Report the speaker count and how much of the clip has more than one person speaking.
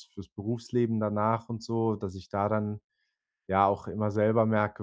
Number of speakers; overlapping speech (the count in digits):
1, no overlap